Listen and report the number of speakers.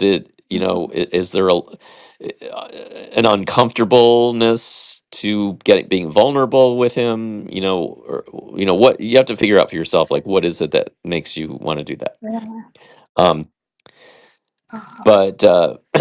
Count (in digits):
2